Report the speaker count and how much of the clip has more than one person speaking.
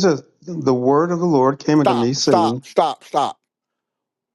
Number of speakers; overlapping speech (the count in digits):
2, about 17%